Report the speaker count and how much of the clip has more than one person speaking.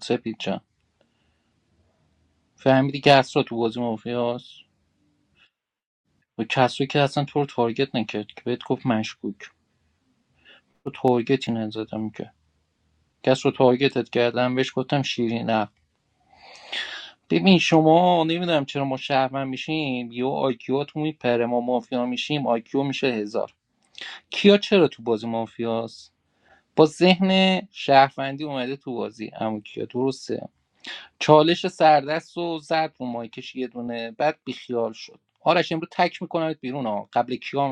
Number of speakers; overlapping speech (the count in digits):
1, no overlap